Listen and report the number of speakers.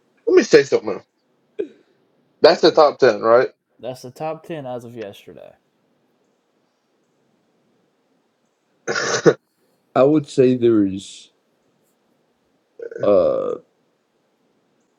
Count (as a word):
three